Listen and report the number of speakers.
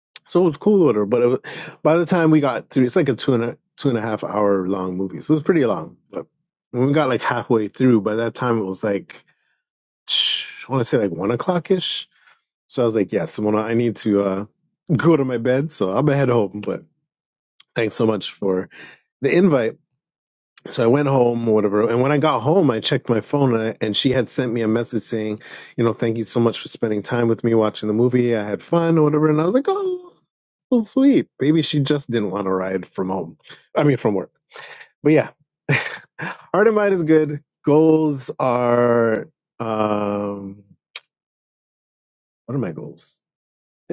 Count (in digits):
1